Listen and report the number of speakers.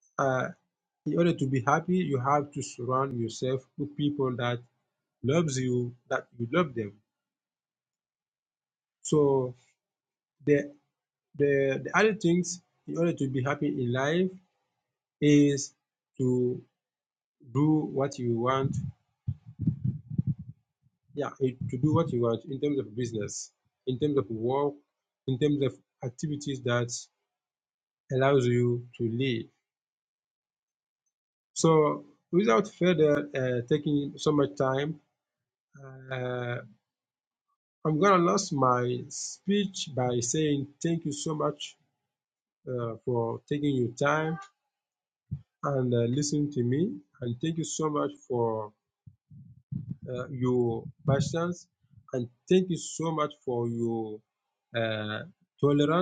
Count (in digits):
1